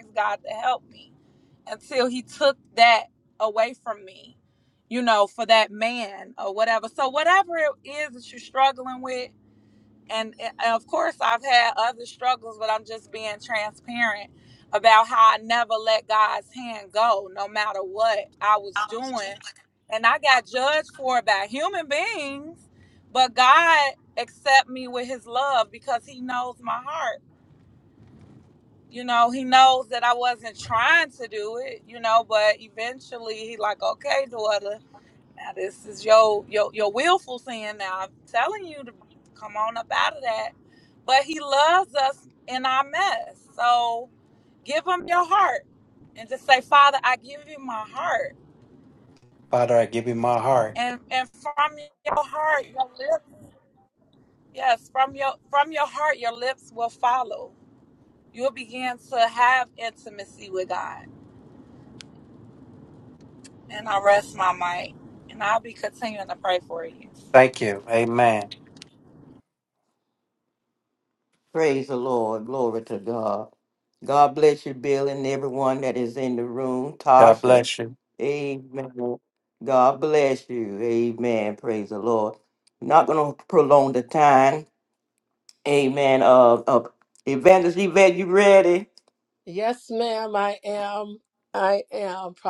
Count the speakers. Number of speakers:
4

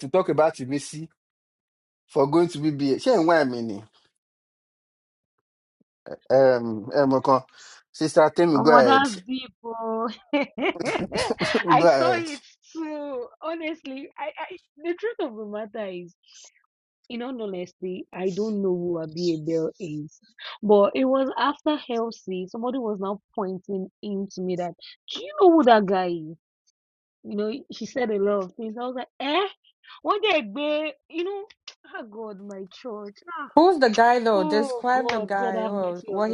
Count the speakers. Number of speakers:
3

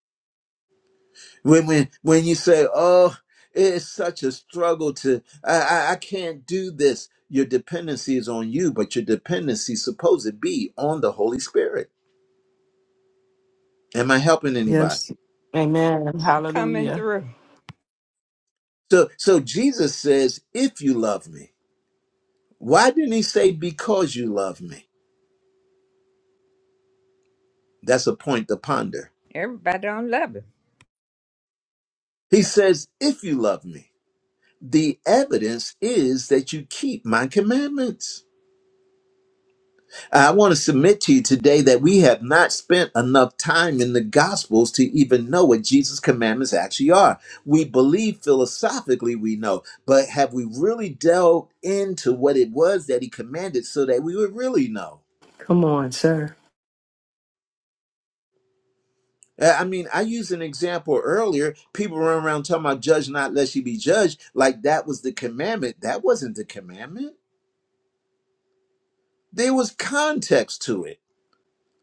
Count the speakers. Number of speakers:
4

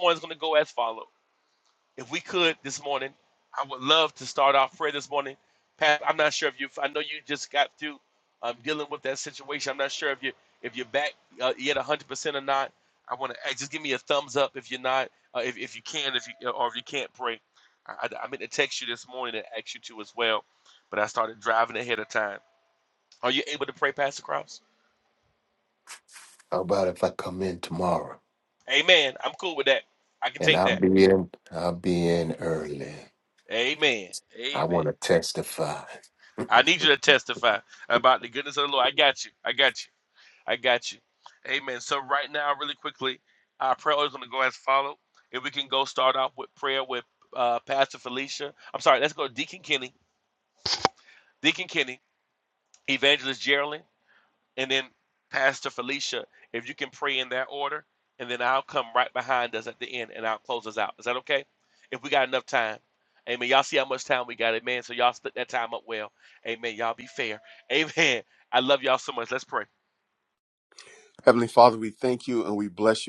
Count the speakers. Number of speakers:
3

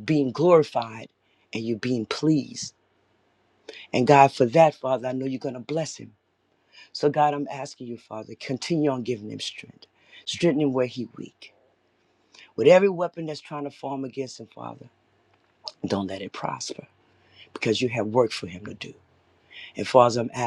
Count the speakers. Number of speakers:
1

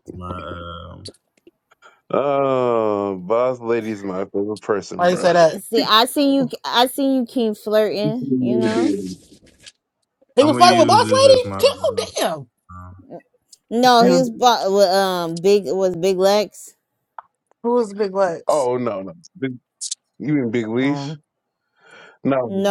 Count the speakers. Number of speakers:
4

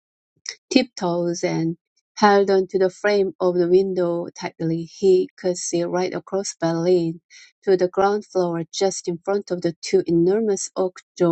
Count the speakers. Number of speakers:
1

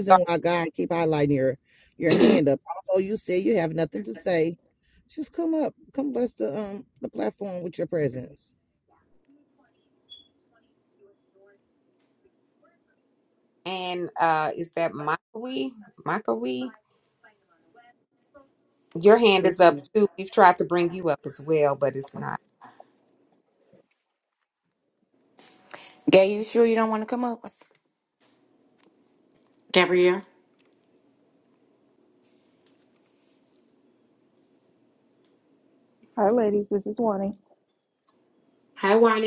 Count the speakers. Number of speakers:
5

